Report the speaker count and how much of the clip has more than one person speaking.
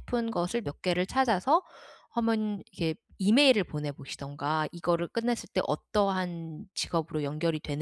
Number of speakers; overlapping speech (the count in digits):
1, no overlap